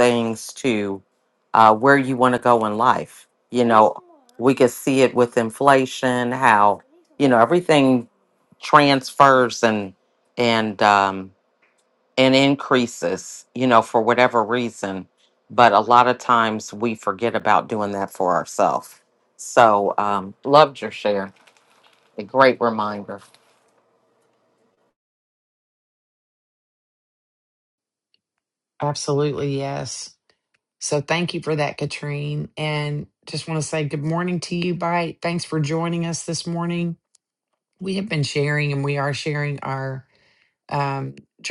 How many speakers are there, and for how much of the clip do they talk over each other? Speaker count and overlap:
2, no overlap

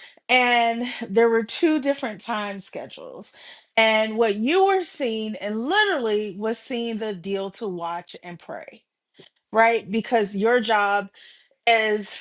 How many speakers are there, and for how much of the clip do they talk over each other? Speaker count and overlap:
1, no overlap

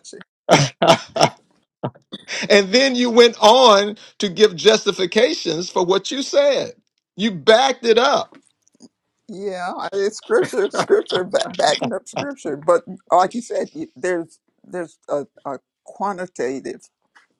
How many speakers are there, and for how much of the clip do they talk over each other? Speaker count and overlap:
2, no overlap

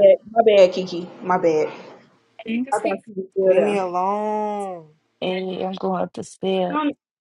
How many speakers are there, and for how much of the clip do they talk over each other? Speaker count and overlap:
3, about 9%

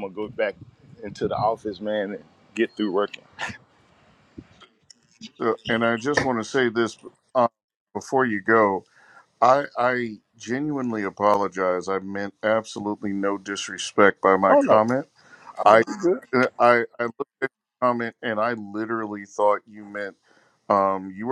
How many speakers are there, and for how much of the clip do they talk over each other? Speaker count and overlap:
2, about 2%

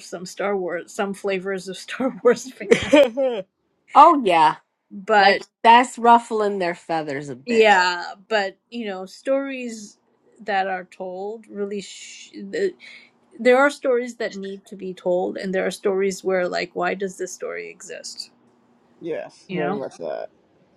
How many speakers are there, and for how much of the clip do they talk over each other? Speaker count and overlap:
3, about 5%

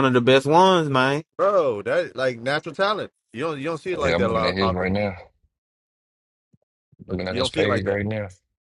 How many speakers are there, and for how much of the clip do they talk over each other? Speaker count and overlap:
3, about 18%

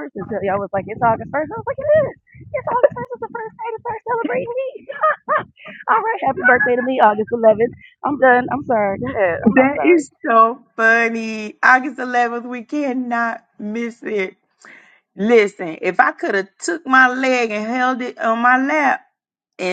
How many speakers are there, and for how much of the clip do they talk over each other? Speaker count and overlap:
2, about 3%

